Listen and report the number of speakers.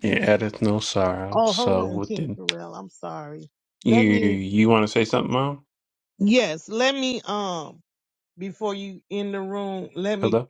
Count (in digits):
2